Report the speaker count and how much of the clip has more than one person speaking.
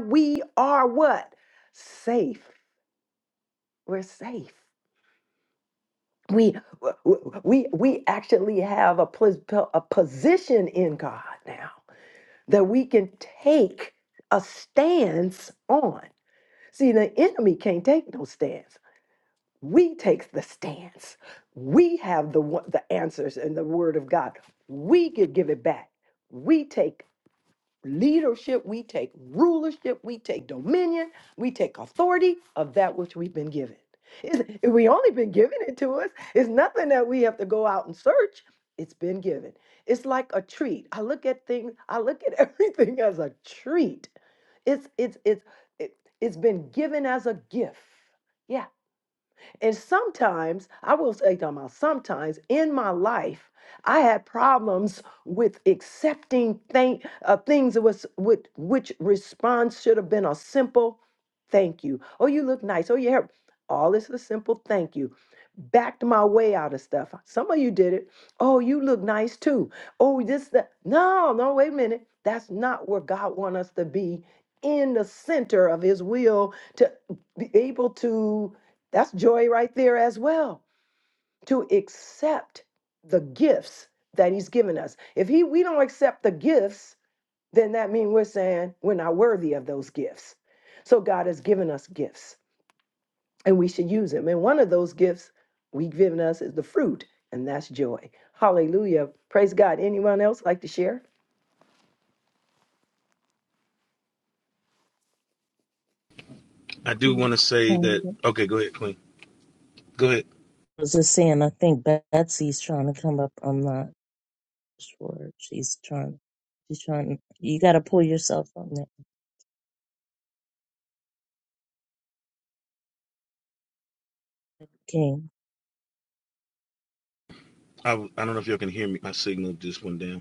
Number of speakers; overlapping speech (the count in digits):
3, under 1%